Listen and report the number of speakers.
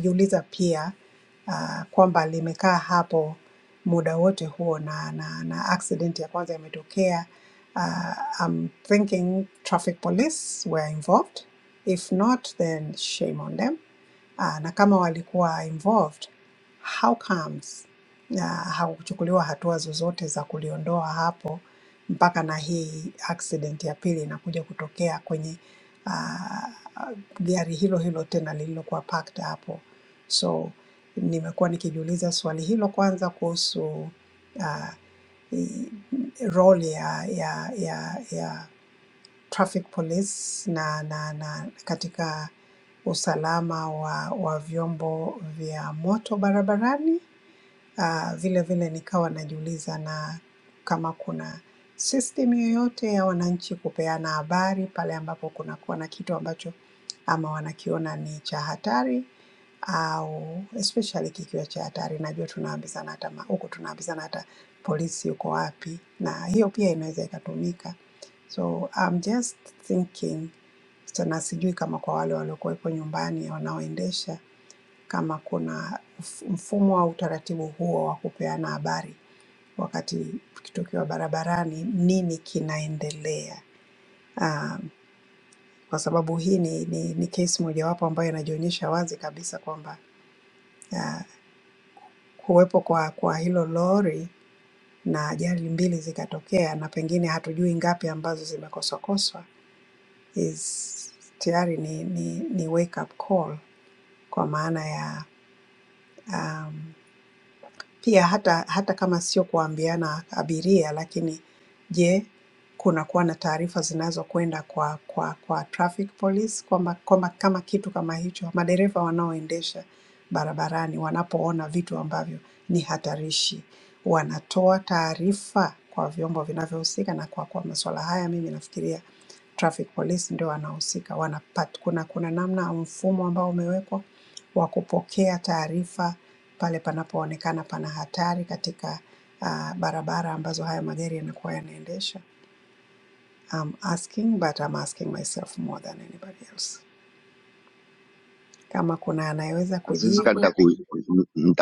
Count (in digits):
2